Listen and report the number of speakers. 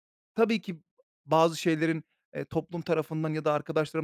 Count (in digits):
1